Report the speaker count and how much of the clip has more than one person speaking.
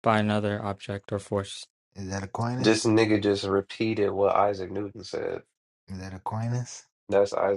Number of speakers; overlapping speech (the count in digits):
3, about 2%